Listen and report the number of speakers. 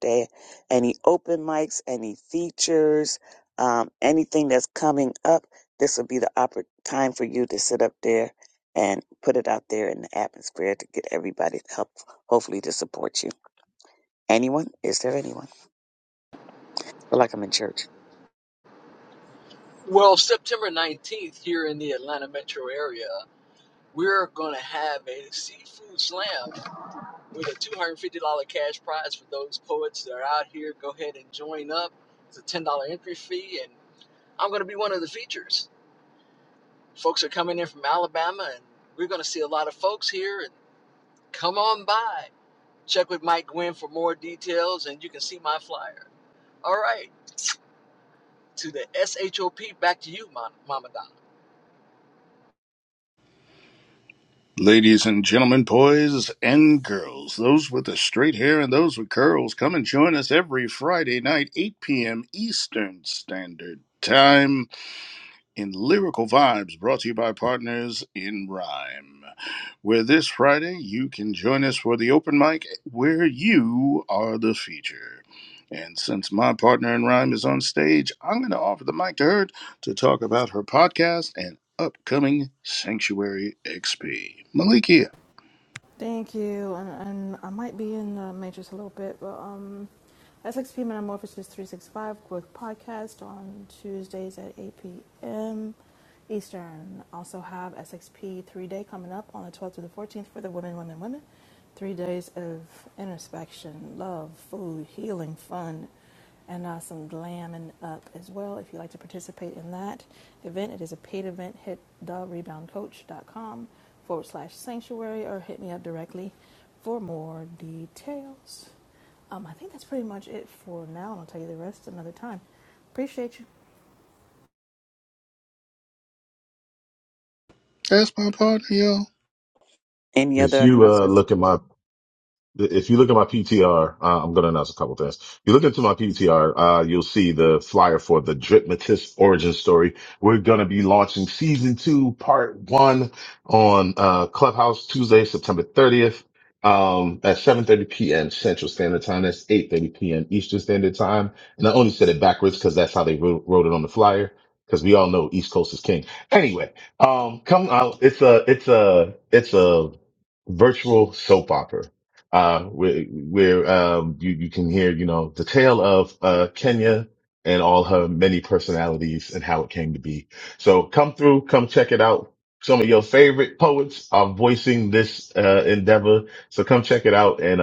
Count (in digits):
5